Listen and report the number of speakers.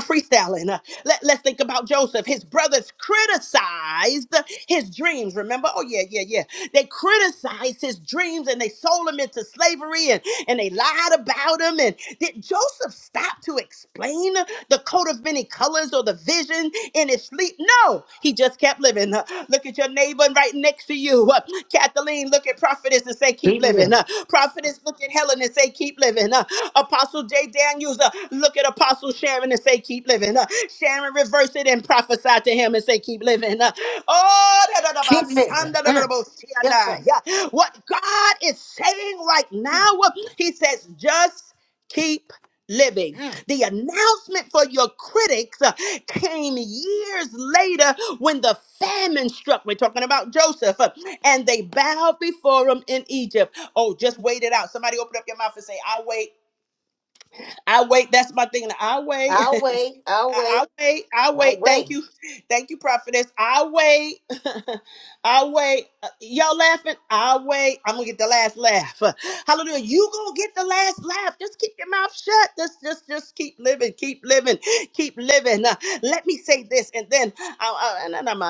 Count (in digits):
2